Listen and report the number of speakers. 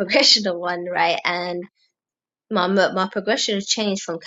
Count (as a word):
one